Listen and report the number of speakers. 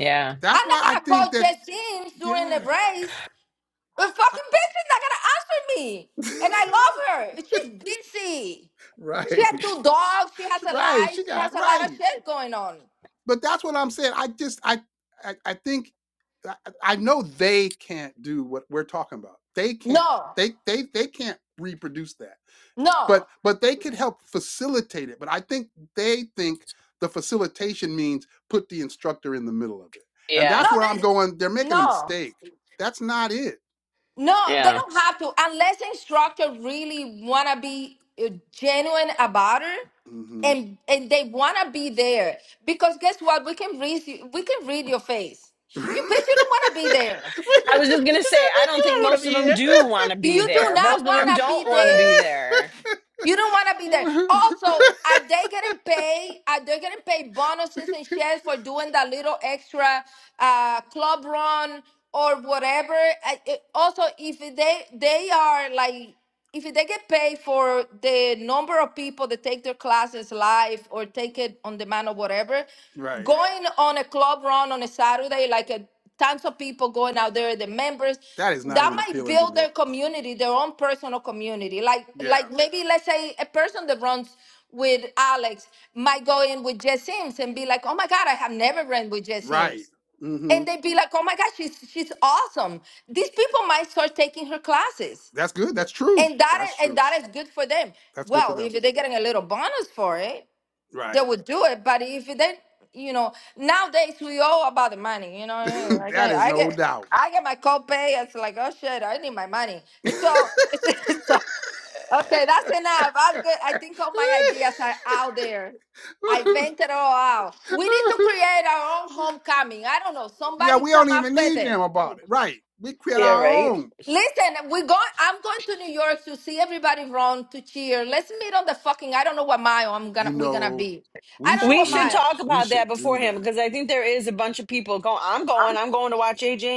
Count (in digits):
3